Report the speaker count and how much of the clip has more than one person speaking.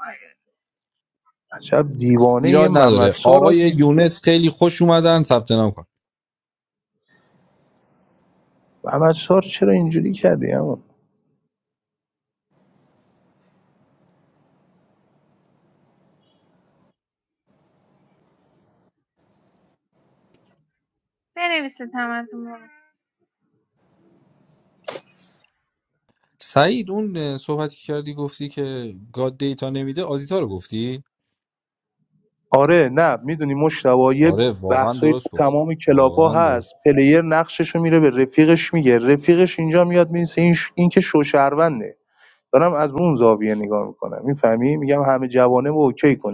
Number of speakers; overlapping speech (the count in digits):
3, about 6%